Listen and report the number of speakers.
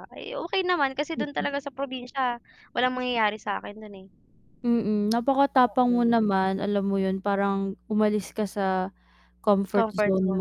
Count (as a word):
two